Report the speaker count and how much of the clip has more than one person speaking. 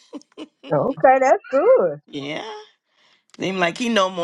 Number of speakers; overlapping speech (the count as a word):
two, no overlap